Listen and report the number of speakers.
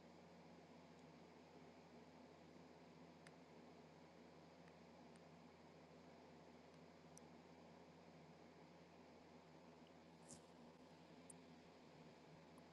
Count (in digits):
0